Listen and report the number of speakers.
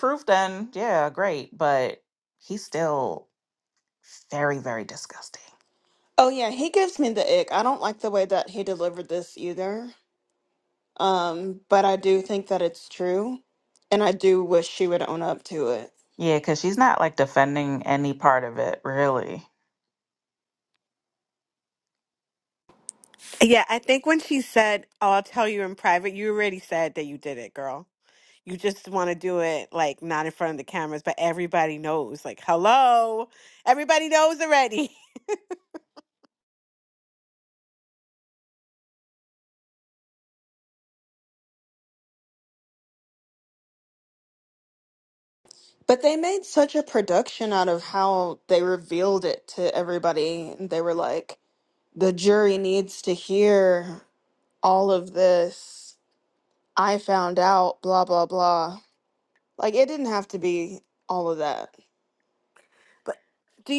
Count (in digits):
3